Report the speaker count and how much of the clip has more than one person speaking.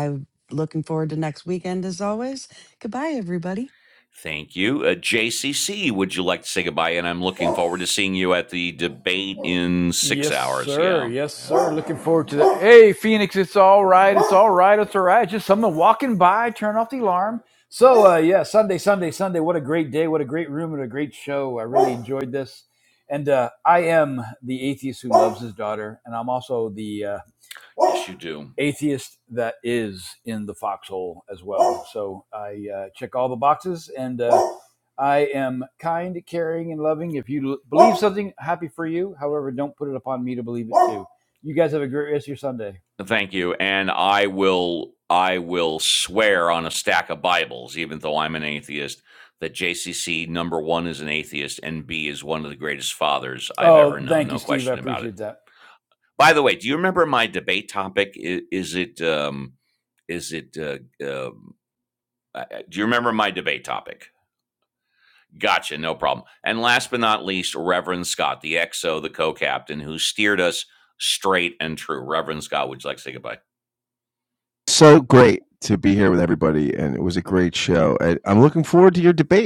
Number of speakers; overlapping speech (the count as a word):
four, about 4%